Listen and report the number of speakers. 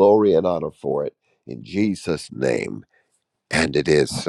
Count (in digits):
1